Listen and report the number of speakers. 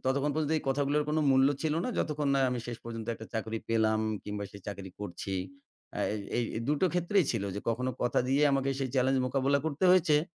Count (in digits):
1